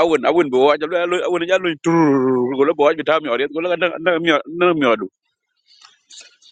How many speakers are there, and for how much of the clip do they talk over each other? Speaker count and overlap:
1, no overlap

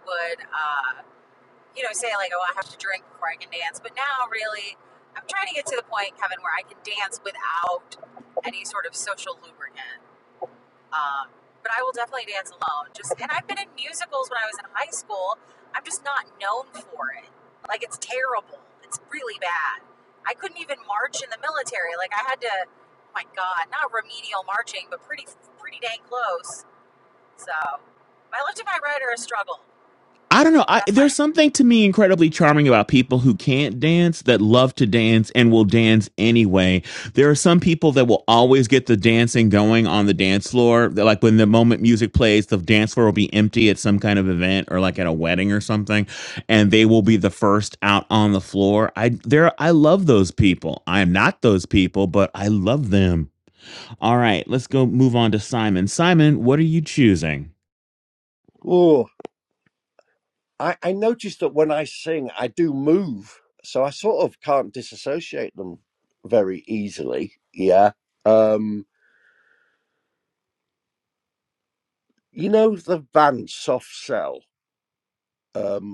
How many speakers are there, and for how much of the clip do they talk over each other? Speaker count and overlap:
3, under 1%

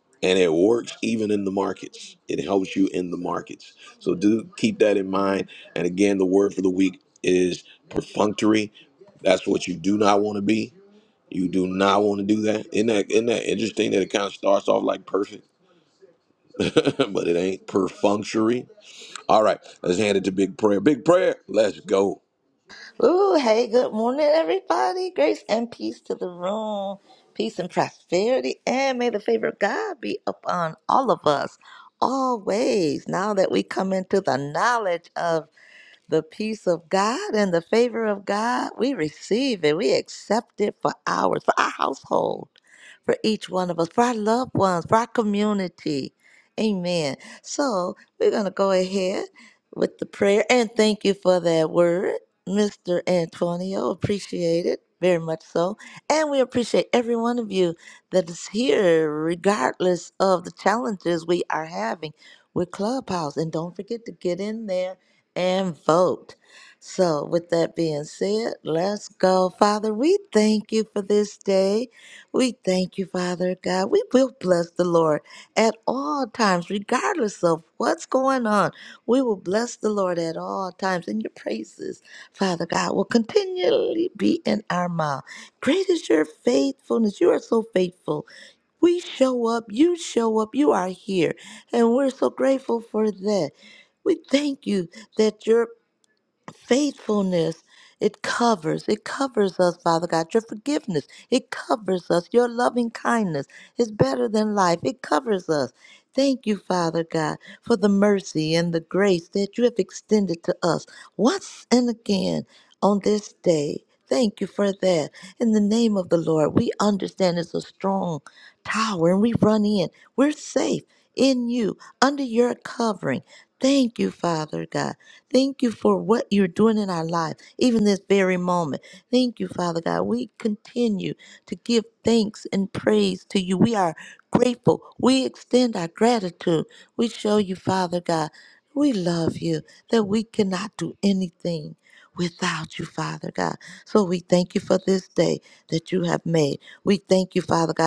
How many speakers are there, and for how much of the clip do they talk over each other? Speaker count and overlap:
2, no overlap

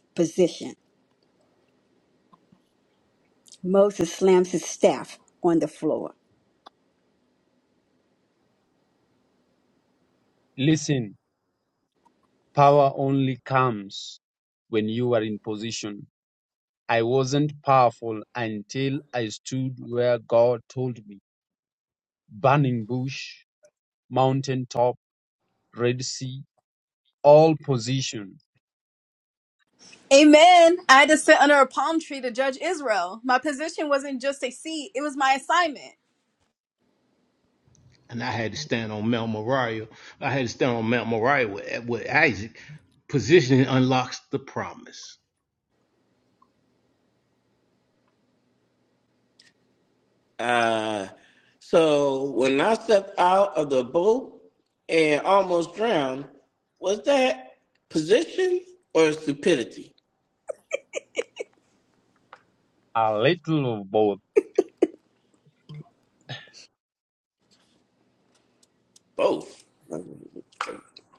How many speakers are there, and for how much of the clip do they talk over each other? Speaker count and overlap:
5, no overlap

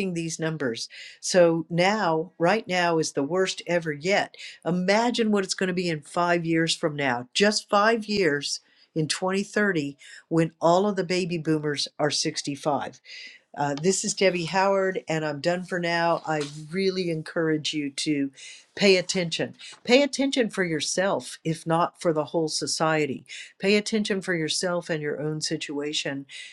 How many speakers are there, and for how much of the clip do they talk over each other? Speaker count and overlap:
1, no overlap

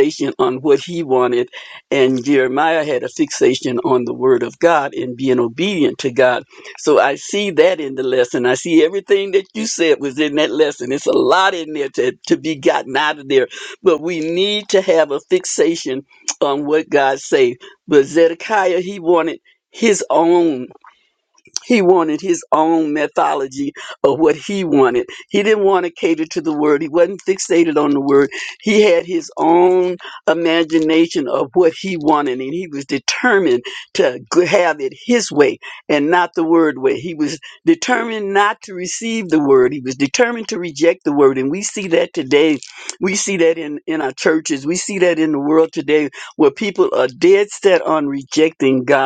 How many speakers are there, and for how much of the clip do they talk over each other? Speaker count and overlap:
1, no overlap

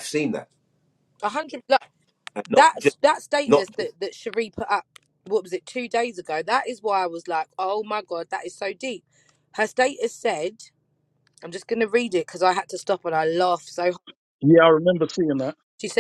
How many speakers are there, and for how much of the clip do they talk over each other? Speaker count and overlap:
3, about 5%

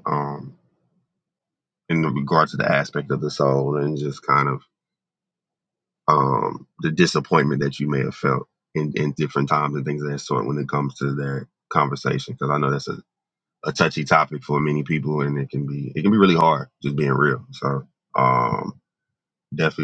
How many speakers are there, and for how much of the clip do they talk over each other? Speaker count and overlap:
1, no overlap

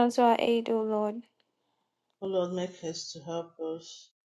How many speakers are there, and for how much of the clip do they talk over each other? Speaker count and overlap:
2, no overlap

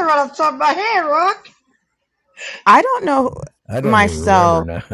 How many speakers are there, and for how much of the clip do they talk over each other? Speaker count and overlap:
3, about 17%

